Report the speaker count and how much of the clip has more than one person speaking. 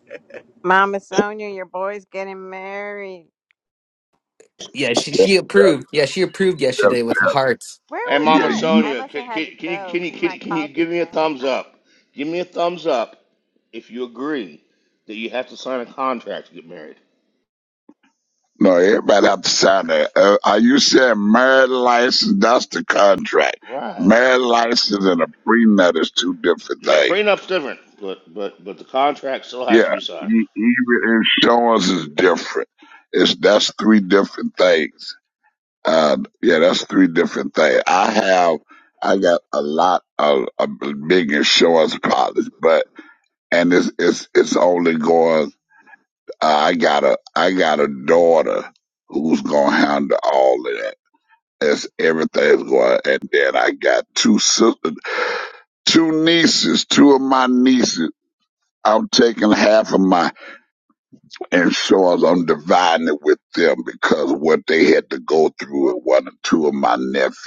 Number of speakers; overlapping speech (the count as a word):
four, about 8%